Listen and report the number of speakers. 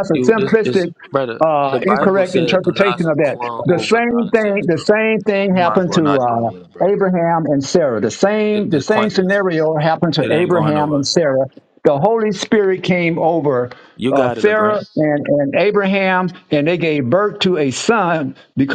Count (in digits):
2